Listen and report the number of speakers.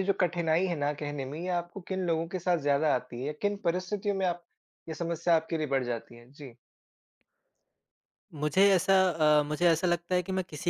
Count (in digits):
2